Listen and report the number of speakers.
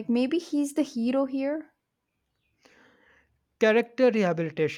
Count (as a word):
two